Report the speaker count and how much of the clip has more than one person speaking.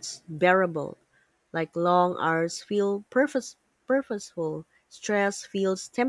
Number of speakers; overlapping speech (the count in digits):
1, no overlap